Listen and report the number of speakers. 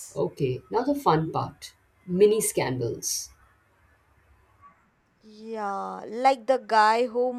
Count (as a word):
two